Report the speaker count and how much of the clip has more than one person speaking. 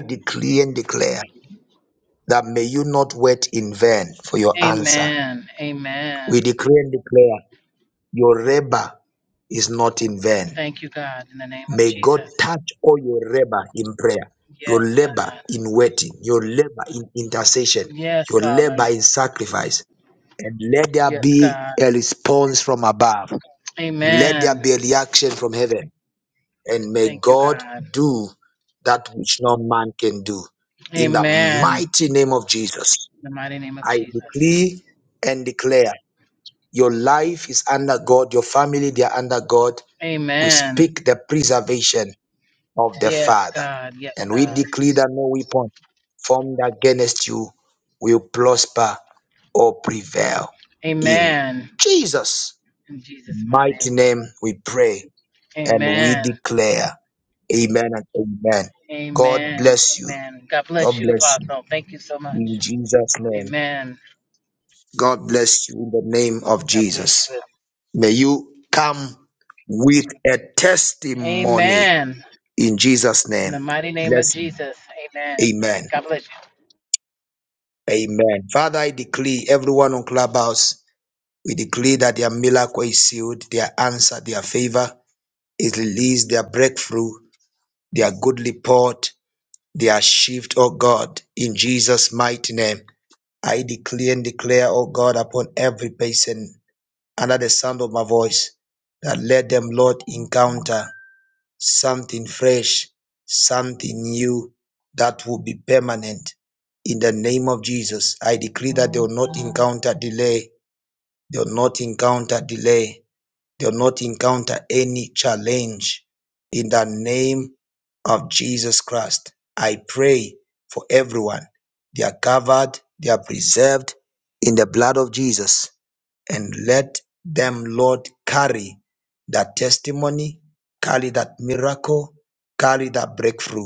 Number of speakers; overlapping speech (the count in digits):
2, about 10%